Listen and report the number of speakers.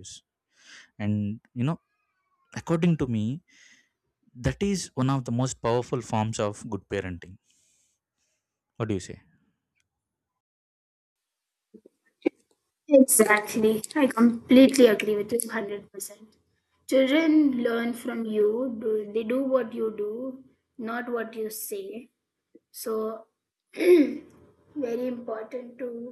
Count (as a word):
two